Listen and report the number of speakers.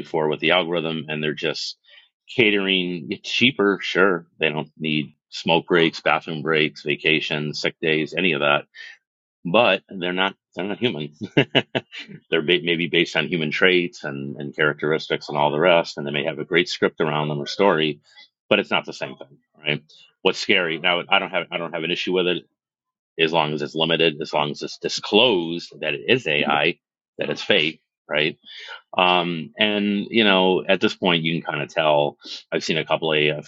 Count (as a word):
one